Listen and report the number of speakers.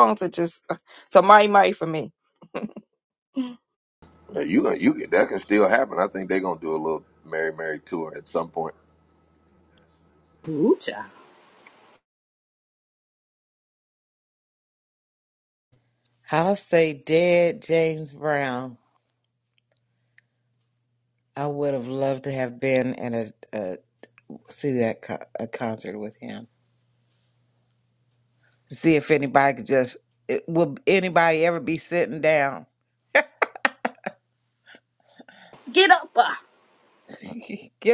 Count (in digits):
4